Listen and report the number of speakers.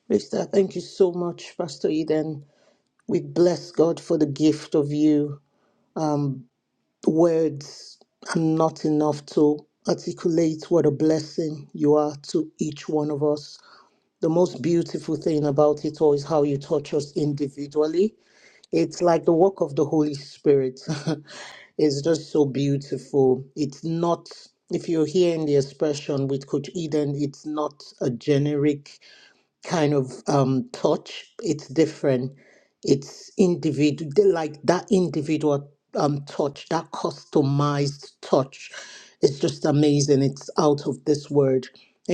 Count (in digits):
1